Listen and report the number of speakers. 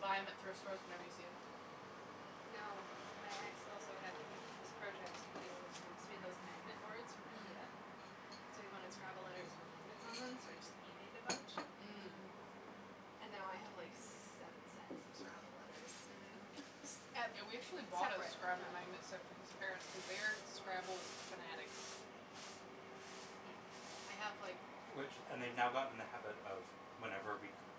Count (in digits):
4